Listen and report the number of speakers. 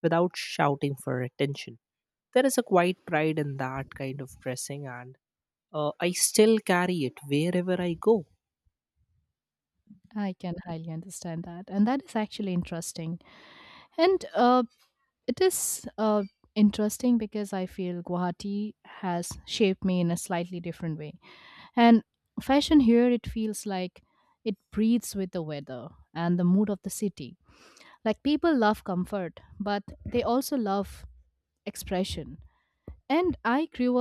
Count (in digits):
2